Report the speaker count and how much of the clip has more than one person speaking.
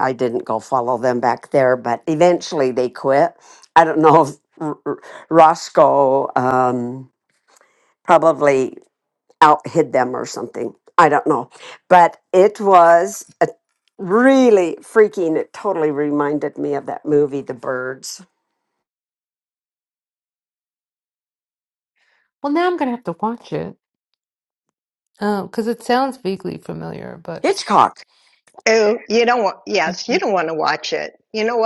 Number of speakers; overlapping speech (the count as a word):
three, about 1%